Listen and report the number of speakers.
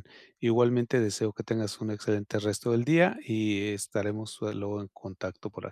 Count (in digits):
1